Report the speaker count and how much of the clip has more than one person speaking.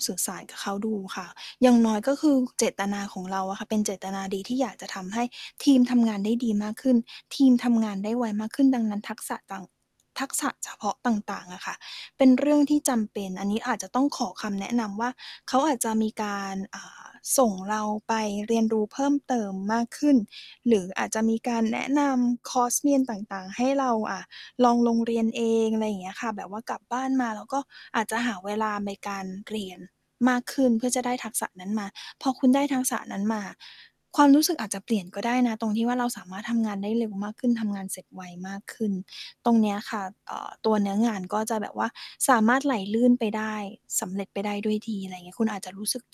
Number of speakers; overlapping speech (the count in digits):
1, no overlap